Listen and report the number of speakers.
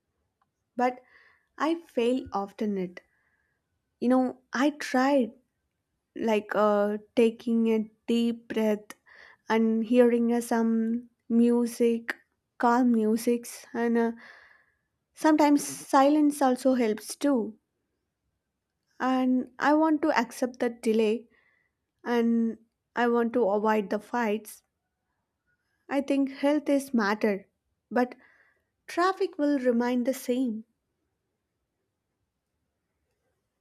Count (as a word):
one